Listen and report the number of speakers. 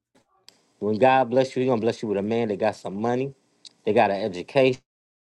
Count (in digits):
1